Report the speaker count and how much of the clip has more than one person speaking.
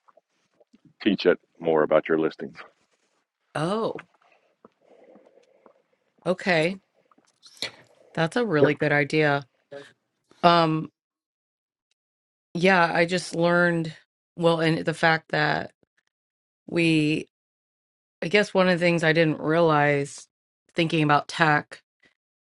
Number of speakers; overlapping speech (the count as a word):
two, no overlap